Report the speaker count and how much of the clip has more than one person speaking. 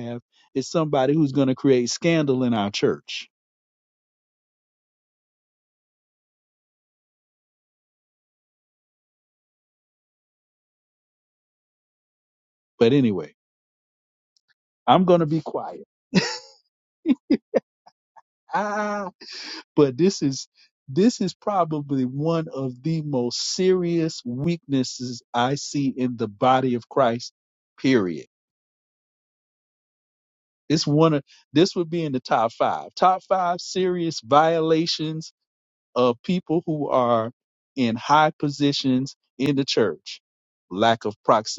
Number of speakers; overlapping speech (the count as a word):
one, no overlap